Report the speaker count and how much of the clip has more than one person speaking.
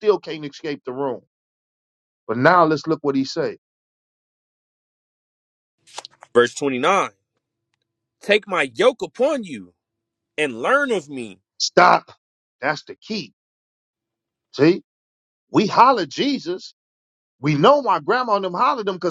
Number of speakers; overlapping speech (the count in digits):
2, no overlap